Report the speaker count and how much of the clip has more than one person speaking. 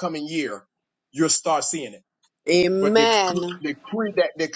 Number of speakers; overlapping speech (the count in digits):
2, about 7%